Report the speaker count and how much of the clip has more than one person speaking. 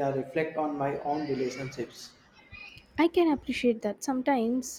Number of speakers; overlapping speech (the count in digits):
2, no overlap